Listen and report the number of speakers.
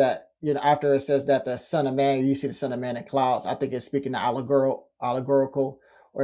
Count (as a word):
one